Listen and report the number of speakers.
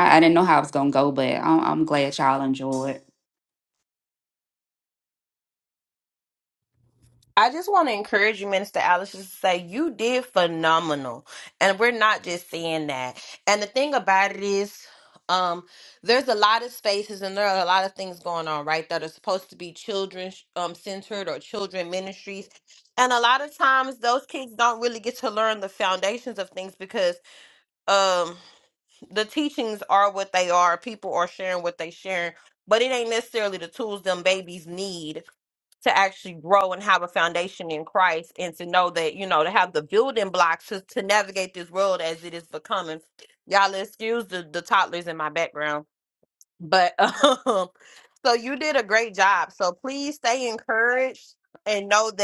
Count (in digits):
2